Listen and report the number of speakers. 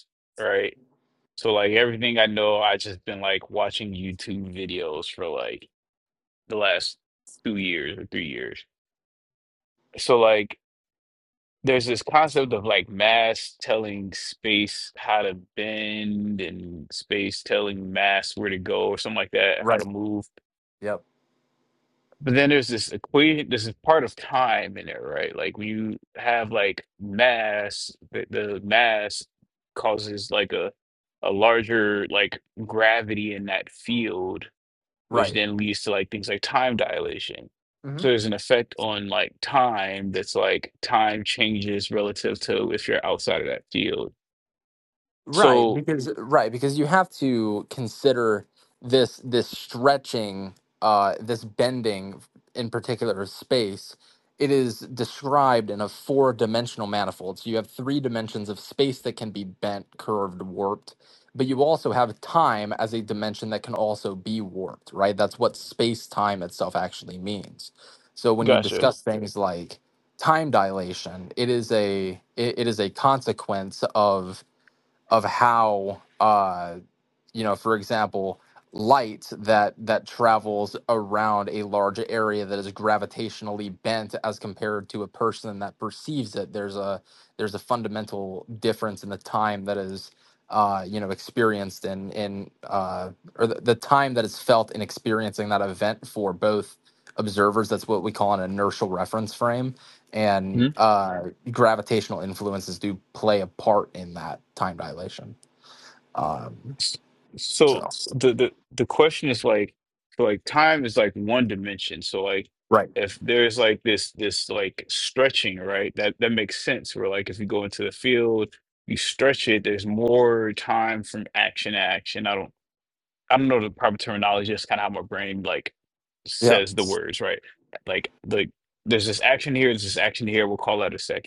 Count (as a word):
two